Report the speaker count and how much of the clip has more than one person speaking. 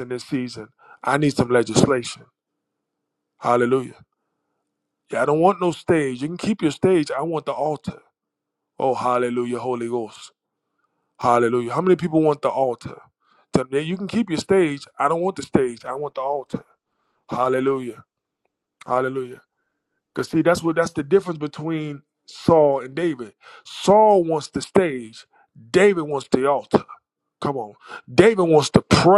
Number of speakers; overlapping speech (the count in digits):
1, no overlap